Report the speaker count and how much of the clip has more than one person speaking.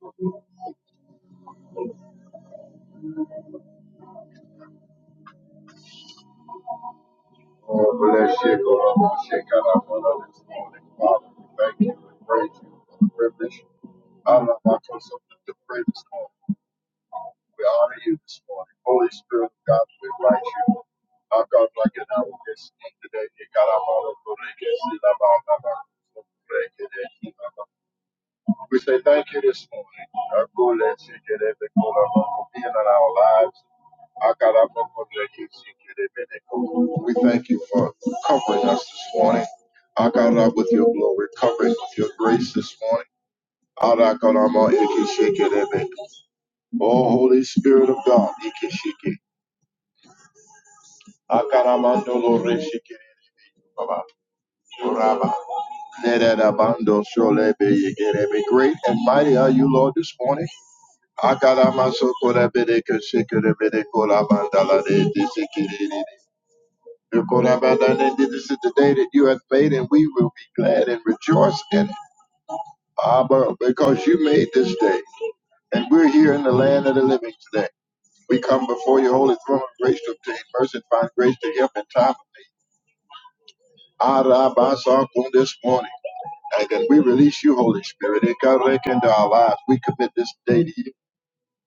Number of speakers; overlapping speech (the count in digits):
1, no overlap